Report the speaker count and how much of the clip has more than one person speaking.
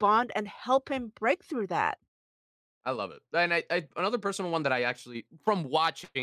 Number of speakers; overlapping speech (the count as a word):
two, no overlap